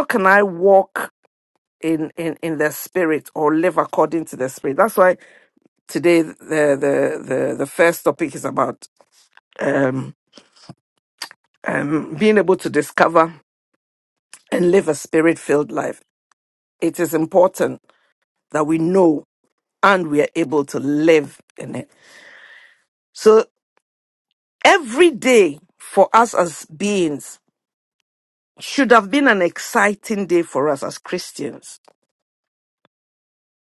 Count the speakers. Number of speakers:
one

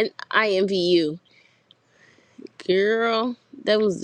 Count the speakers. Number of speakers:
one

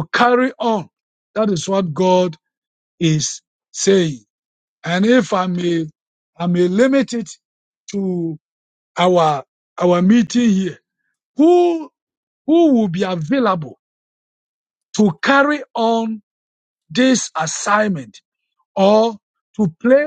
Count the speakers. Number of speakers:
one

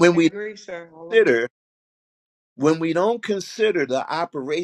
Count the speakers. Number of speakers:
two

